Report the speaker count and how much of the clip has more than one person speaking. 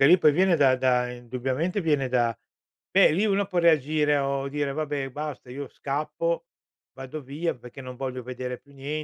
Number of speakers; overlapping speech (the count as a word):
one, no overlap